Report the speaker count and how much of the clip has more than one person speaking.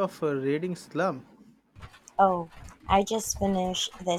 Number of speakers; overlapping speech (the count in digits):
2, no overlap